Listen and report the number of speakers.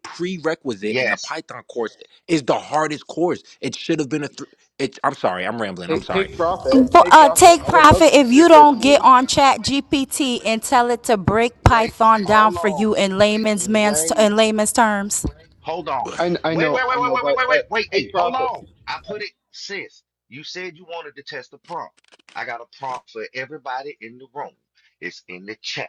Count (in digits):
4